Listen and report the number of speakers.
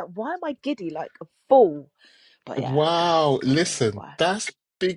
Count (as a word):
two